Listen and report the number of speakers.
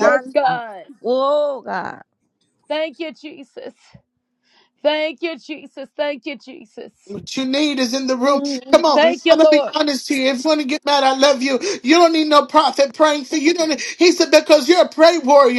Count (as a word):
three